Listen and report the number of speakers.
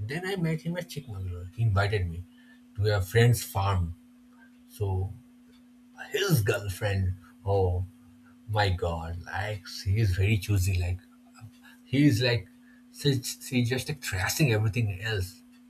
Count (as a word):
one